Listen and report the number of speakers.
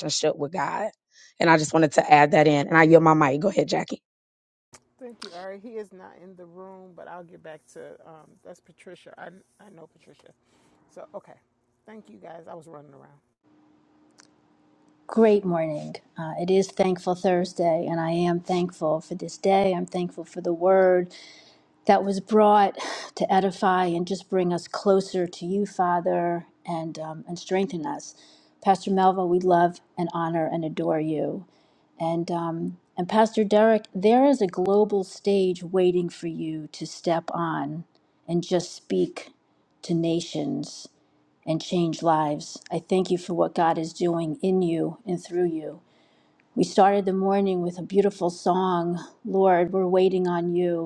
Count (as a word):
three